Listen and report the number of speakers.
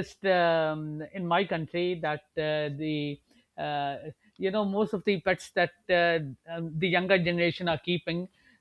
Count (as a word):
one